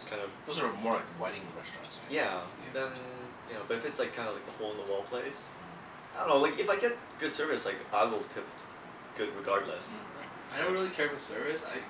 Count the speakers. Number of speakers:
3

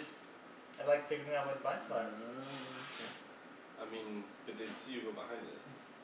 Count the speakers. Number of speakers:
3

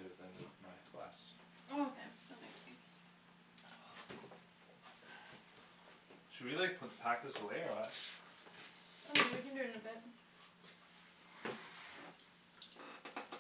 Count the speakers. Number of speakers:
2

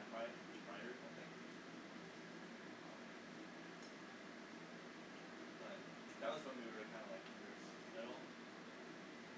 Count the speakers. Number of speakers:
1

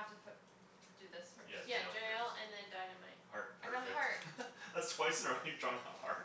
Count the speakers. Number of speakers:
3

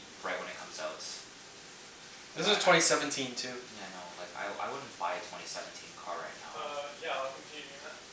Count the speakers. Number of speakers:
3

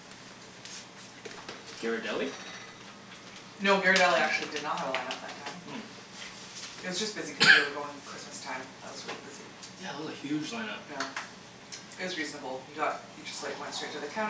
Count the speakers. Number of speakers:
2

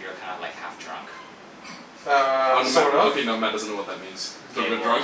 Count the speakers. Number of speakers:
3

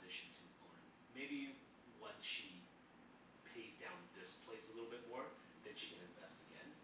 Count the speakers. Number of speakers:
1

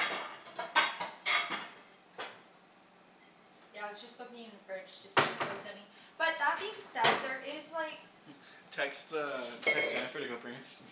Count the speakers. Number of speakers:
2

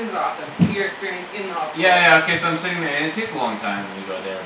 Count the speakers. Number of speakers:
2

